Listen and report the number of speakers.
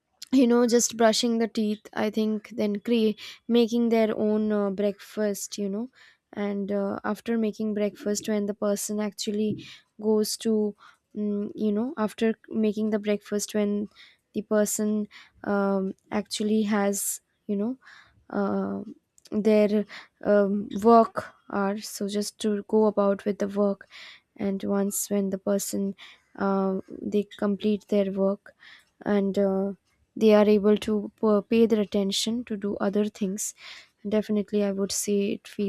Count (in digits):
1